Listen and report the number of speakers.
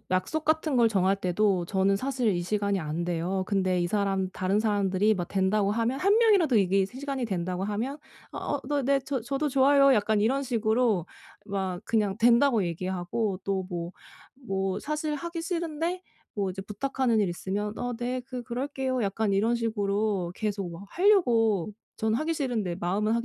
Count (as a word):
one